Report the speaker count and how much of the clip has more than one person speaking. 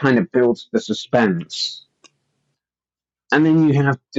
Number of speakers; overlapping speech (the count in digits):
1, no overlap